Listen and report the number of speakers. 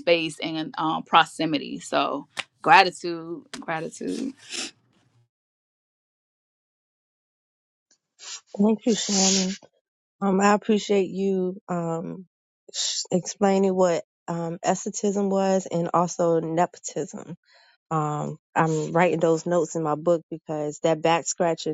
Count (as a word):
two